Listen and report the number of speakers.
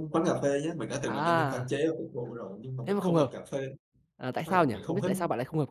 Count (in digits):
2